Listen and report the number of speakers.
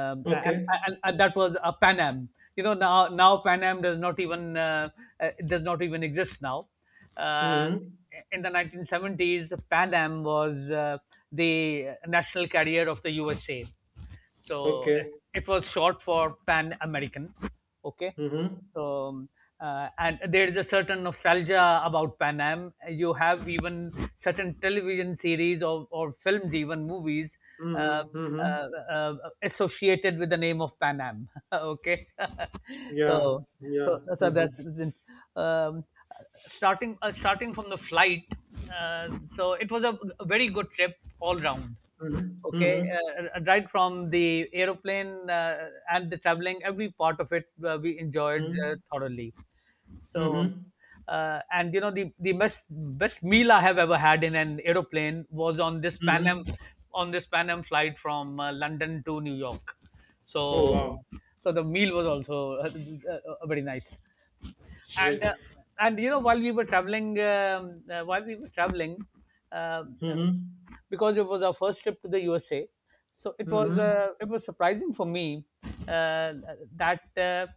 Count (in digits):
2